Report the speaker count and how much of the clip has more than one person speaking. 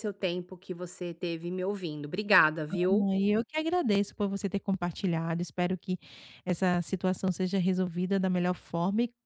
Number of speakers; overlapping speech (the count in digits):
2, no overlap